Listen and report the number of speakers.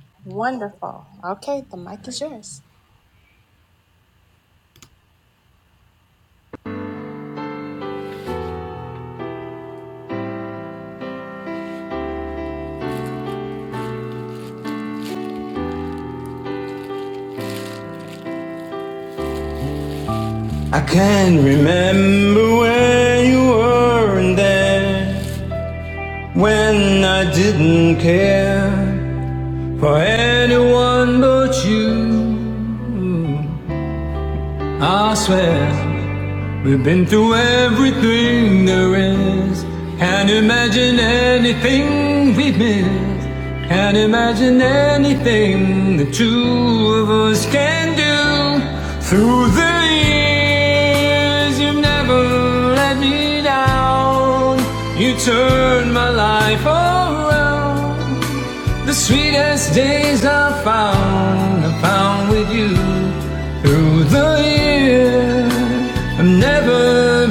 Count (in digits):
2